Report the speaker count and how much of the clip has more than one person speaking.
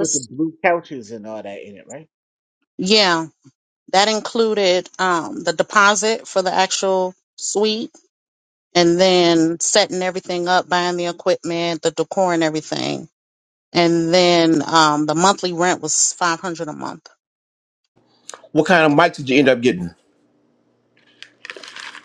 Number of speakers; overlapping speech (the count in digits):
3, under 1%